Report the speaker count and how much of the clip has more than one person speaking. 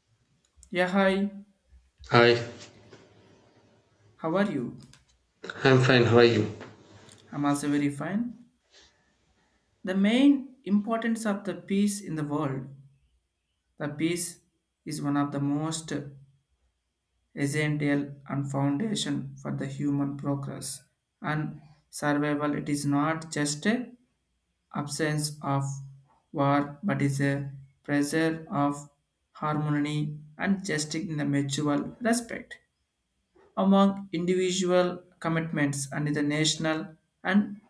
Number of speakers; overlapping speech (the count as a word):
two, no overlap